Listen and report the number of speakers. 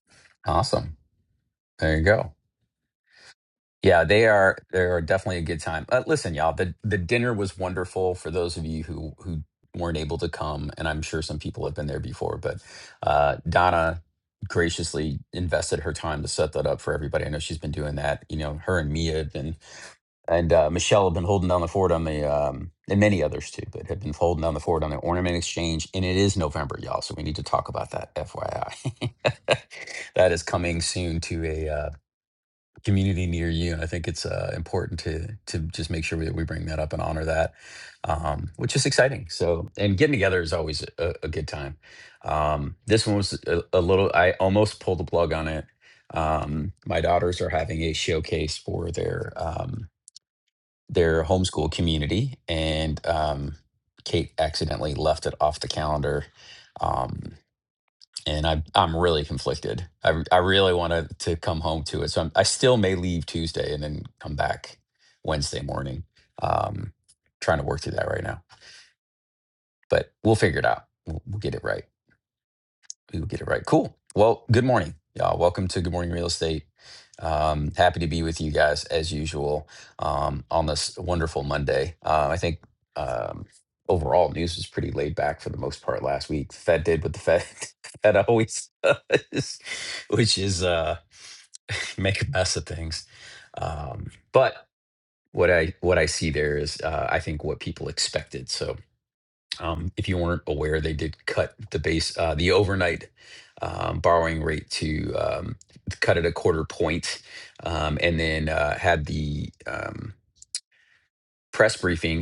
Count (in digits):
1